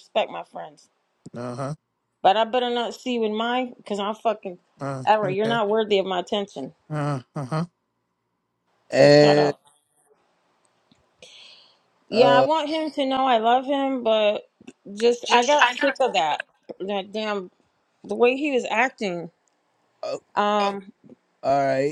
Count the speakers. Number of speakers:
3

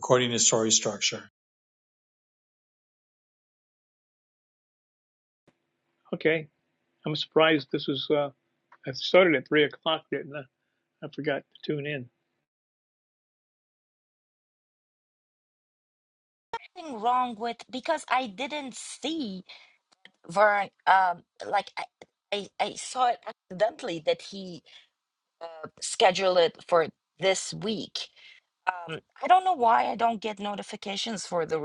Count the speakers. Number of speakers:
3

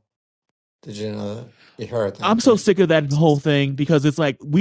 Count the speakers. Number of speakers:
2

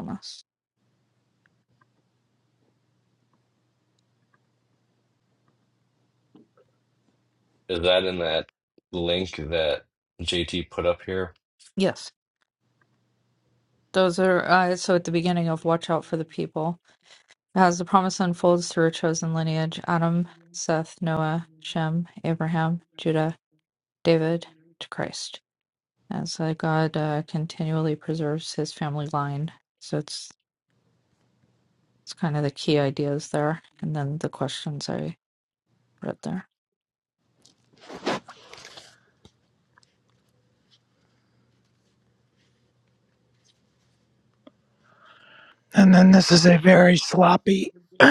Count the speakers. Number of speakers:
3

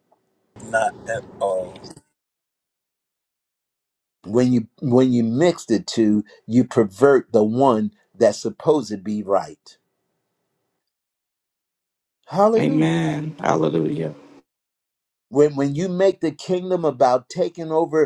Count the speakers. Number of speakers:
3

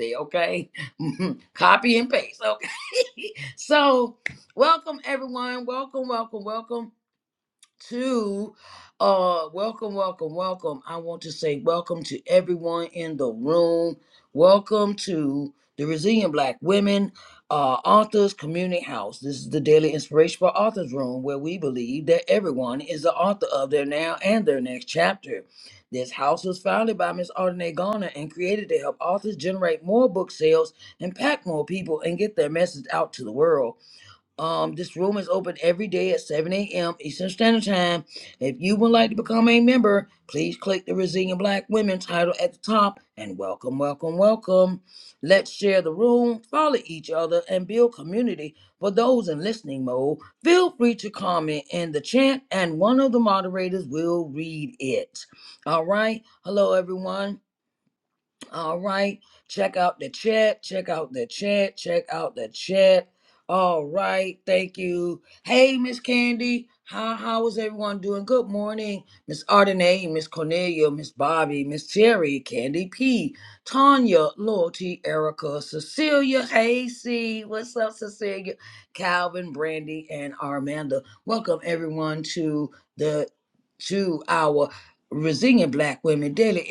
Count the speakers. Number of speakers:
1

